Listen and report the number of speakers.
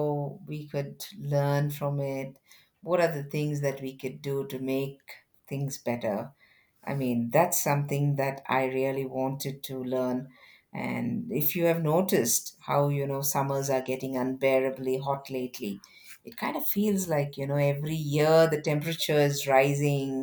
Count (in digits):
1